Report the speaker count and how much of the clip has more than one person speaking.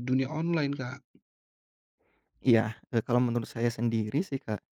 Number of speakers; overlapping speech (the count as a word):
two, no overlap